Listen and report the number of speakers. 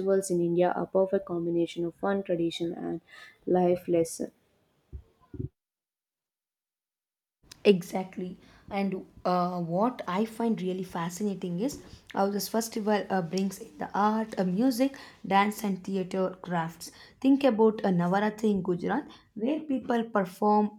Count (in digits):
2